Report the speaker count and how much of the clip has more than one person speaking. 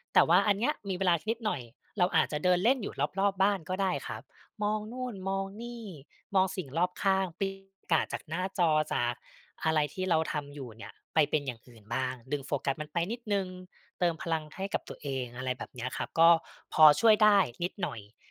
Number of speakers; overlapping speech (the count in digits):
1, no overlap